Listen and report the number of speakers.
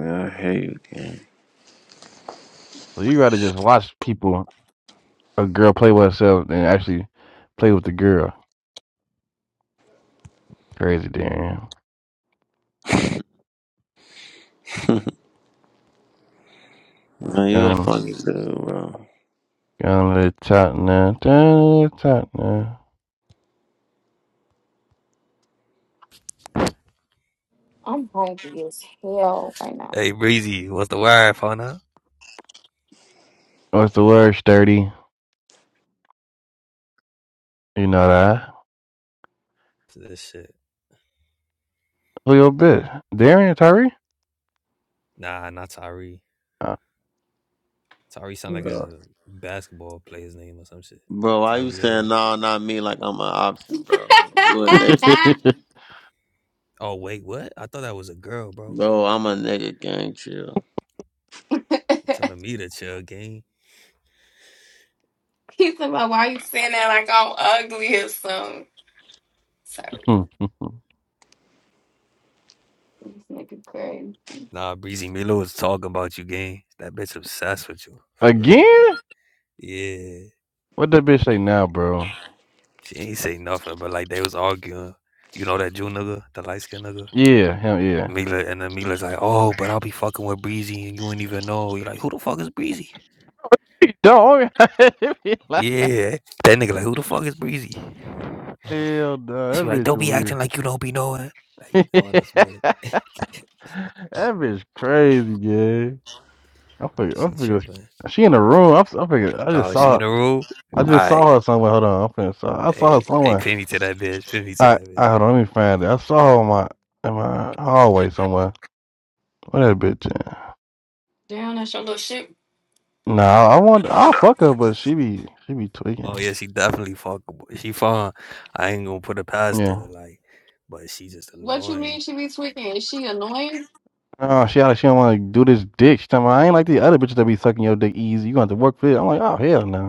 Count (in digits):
4